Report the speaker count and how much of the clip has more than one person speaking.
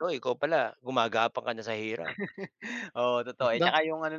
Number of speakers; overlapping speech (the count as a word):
two, about 7%